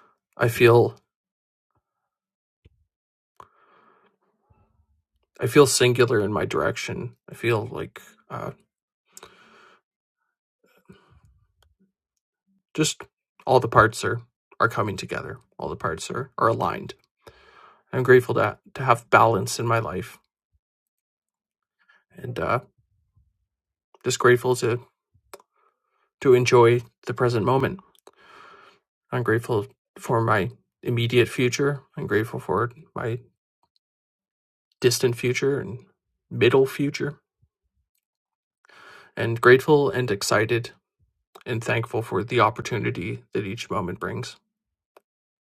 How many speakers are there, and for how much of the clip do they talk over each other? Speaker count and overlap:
1, no overlap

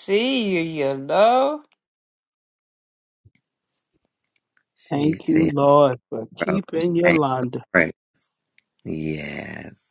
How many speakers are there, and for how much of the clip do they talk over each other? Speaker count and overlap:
3, about 9%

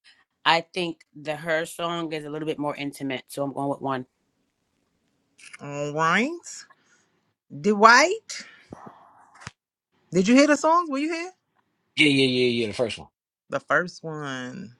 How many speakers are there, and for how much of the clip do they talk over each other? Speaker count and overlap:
3, no overlap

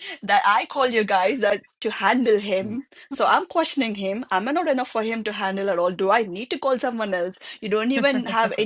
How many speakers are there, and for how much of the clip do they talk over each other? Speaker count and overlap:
1, no overlap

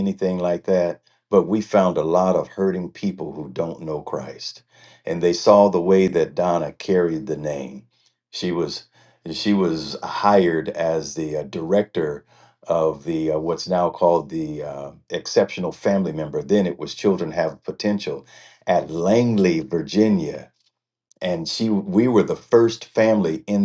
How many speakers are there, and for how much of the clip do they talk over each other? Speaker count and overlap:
1, no overlap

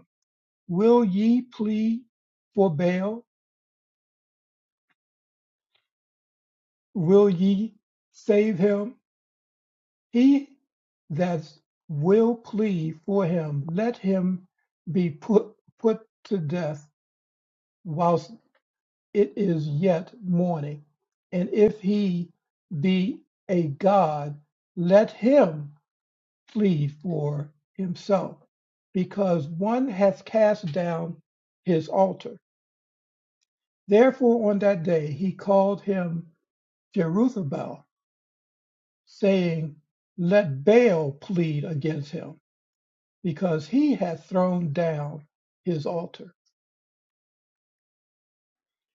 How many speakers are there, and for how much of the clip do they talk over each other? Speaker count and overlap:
1, no overlap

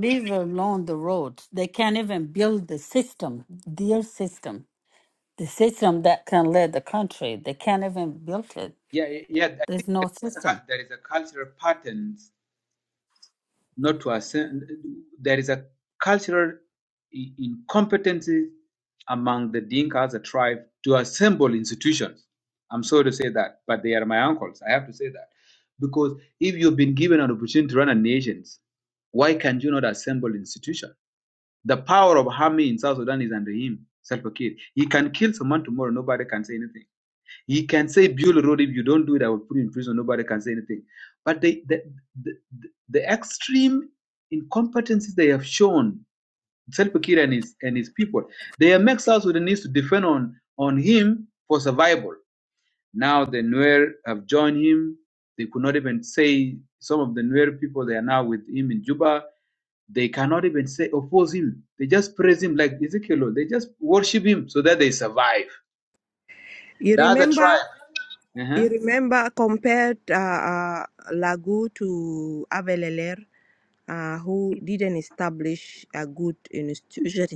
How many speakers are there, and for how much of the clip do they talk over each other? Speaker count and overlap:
3, about 2%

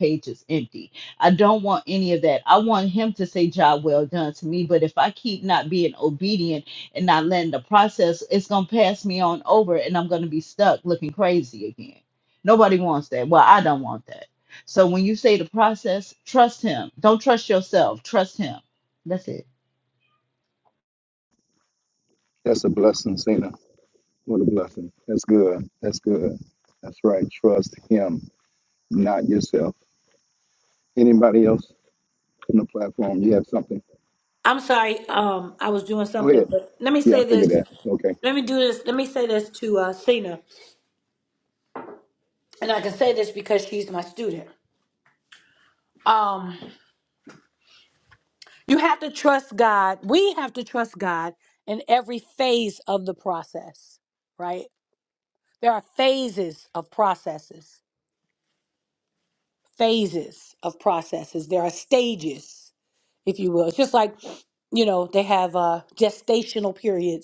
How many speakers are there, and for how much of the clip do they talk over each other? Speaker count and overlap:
3, about 1%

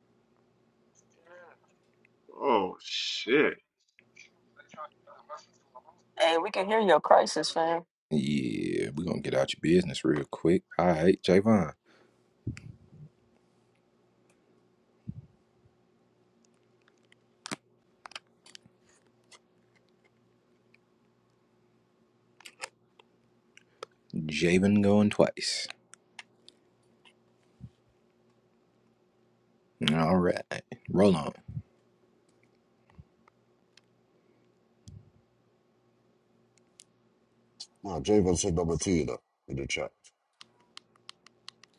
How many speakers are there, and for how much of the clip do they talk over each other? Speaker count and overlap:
4, no overlap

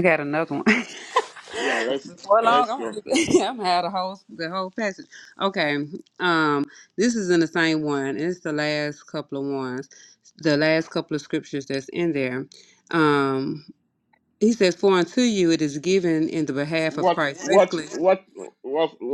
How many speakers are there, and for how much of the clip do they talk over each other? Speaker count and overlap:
2, about 8%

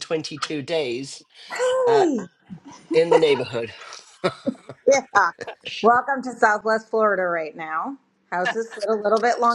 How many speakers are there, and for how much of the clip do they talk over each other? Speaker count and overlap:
2, about 2%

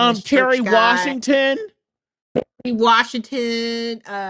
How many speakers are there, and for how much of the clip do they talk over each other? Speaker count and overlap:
2, about 27%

